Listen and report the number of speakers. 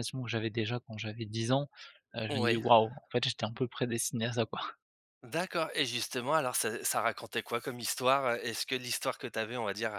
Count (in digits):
2